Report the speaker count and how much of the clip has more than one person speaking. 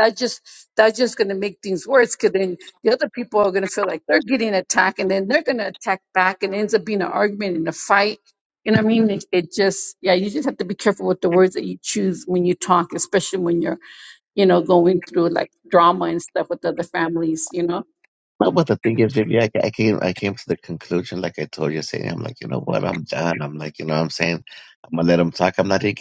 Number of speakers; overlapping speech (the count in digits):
2, no overlap